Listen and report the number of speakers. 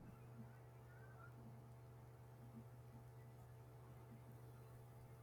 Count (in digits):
0